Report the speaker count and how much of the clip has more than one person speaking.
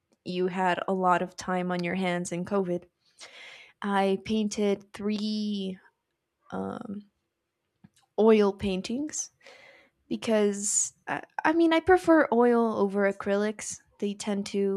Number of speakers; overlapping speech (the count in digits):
1, no overlap